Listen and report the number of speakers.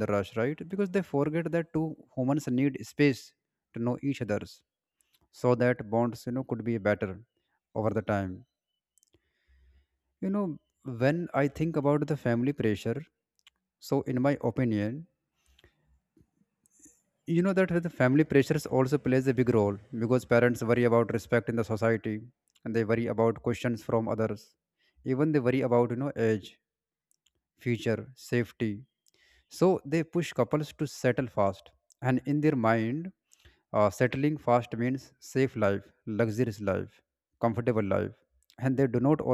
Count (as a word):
one